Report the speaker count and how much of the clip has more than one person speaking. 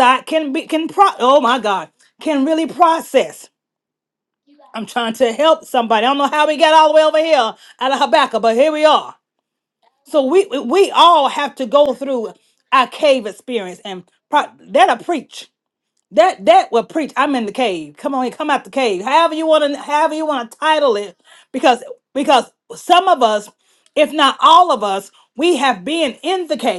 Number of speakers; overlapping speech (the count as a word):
one, no overlap